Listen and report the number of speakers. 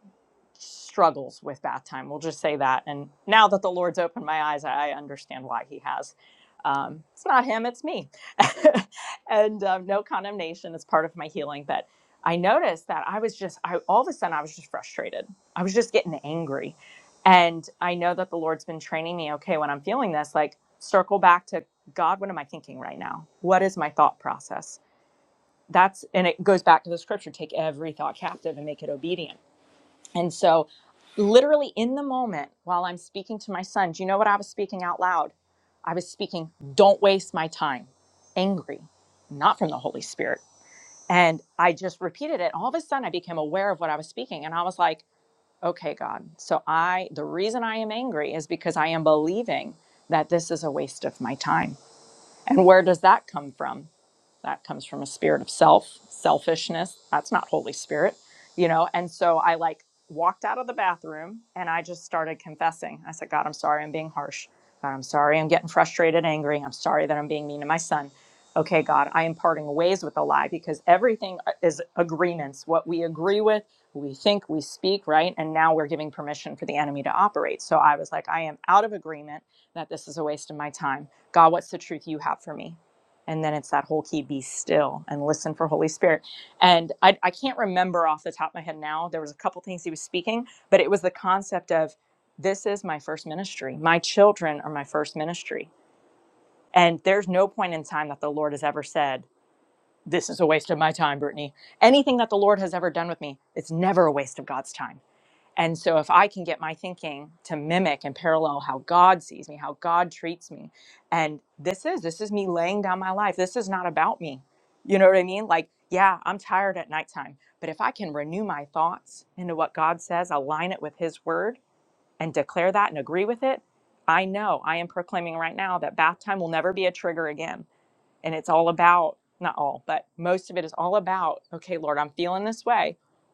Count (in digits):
1